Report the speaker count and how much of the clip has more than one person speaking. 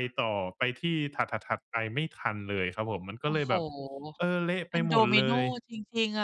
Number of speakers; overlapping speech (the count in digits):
2, about 15%